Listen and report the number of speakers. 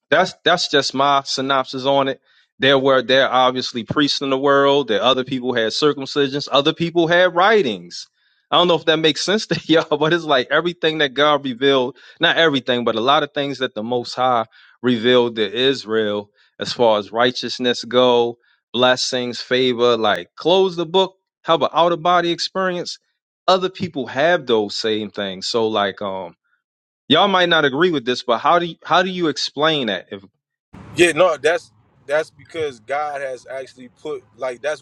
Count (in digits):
2